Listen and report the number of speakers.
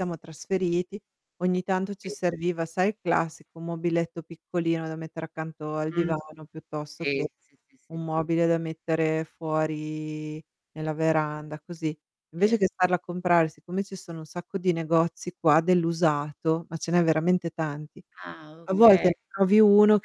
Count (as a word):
two